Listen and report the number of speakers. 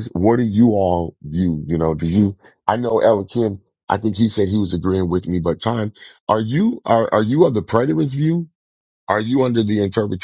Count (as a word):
one